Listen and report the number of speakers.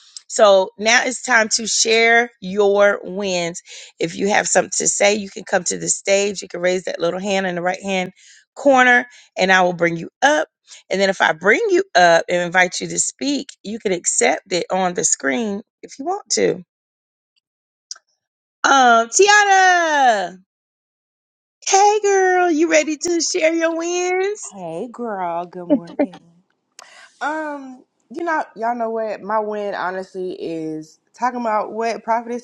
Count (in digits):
2